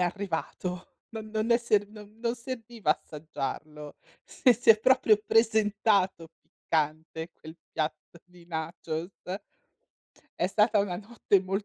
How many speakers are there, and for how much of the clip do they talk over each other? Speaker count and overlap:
one, no overlap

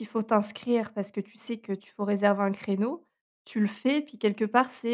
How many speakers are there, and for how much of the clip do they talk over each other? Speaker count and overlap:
one, no overlap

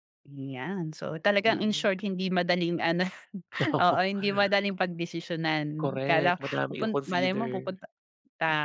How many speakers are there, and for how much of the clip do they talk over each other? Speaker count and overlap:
two, about 28%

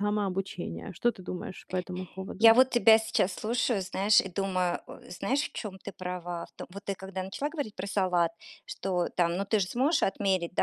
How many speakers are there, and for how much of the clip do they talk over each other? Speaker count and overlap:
two, about 1%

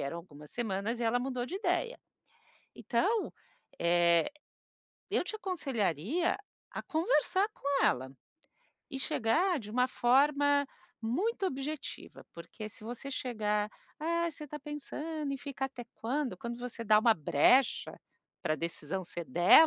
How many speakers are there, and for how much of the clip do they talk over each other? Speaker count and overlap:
one, no overlap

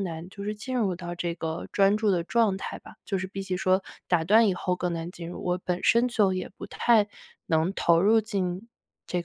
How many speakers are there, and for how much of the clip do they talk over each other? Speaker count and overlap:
one, no overlap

